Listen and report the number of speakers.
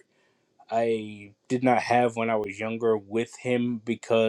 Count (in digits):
1